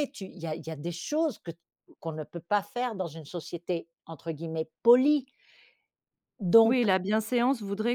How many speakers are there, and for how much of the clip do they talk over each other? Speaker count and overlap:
2, about 3%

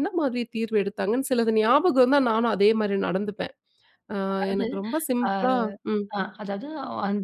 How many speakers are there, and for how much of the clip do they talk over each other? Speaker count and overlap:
2, about 8%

